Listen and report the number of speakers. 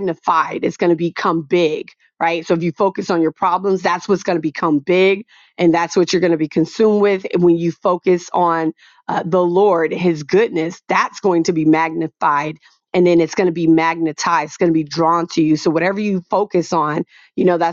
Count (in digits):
1